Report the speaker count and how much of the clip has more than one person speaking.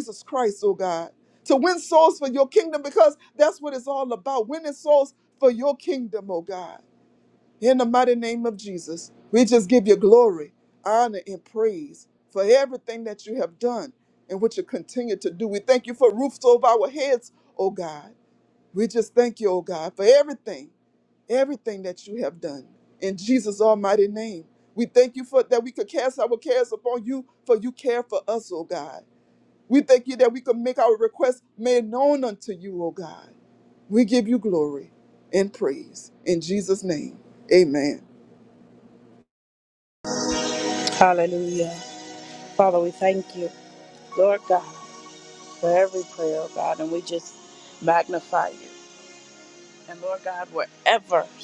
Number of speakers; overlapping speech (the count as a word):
two, no overlap